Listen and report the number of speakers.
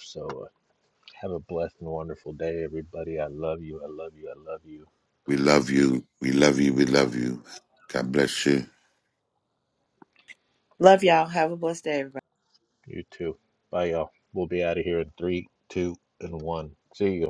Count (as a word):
three